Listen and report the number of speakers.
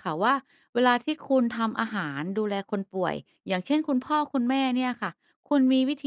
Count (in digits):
1